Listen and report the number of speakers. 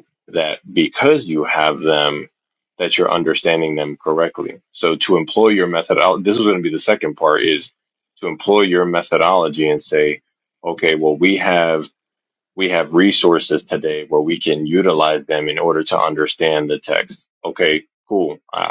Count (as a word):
one